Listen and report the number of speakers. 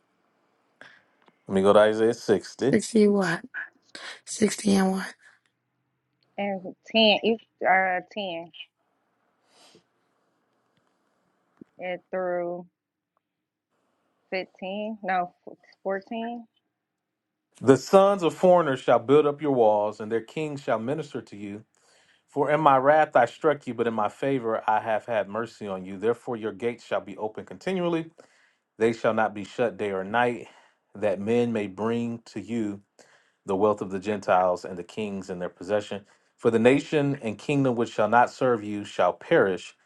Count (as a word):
three